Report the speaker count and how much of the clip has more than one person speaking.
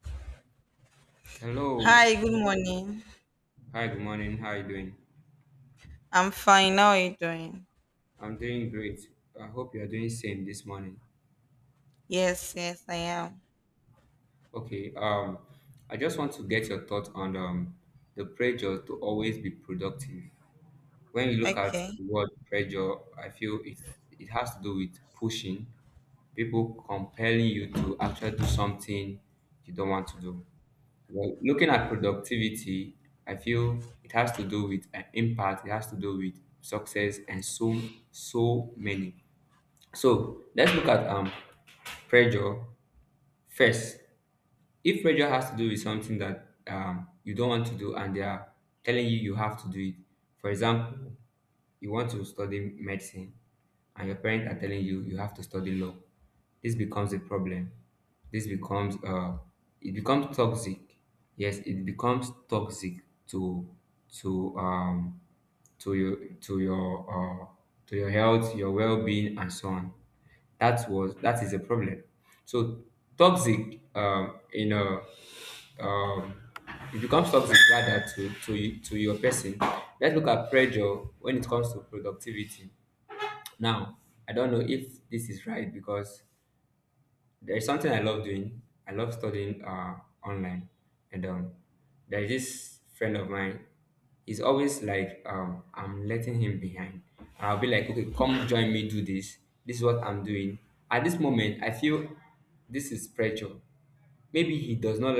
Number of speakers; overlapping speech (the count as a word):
two, about 1%